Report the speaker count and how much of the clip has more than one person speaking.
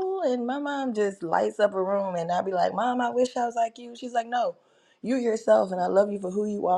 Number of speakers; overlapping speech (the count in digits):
1, no overlap